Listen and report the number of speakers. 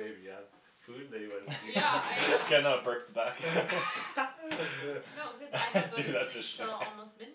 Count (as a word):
three